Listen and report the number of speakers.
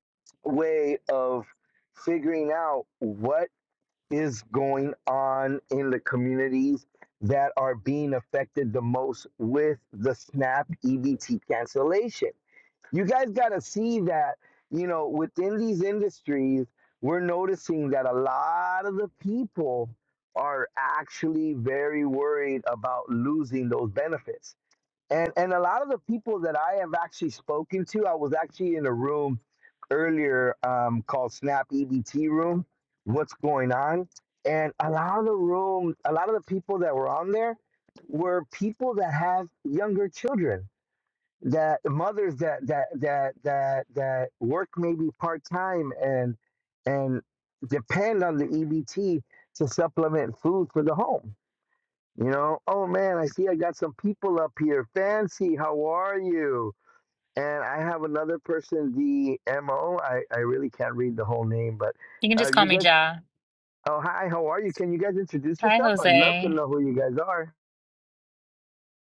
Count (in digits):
2